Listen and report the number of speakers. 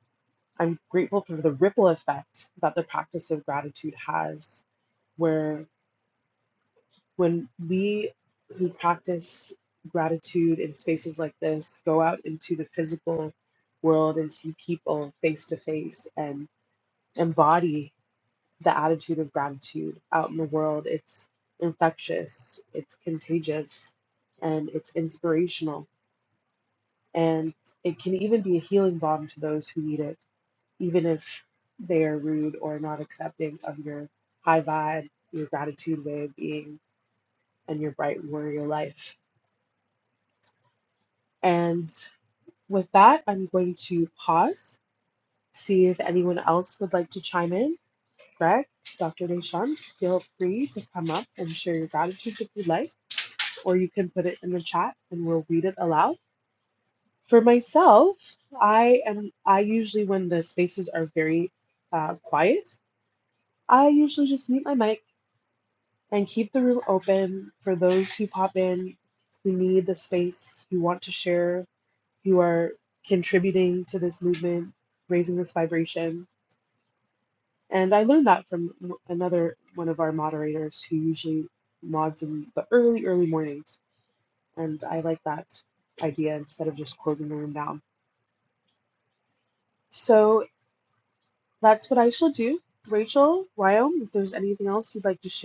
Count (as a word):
one